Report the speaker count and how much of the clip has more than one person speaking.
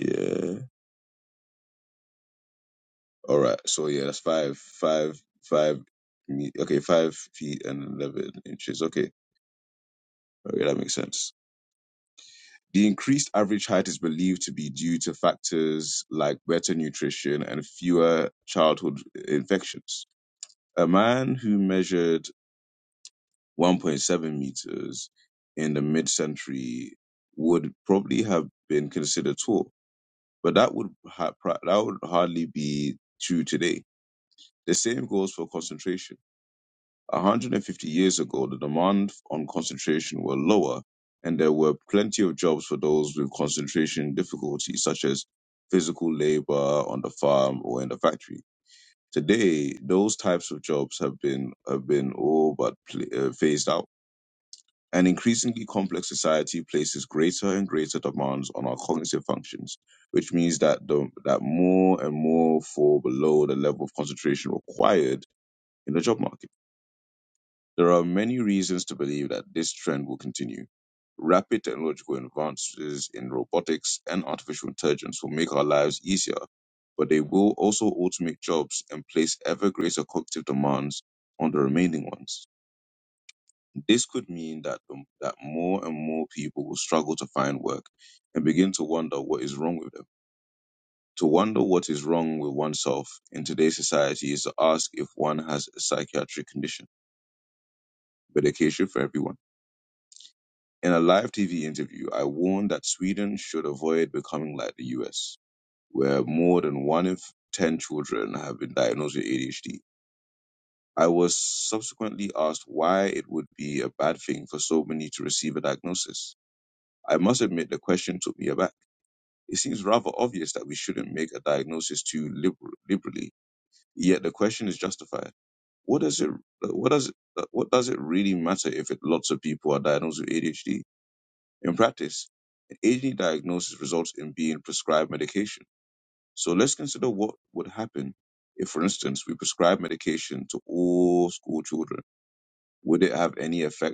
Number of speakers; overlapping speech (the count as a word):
one, no overlap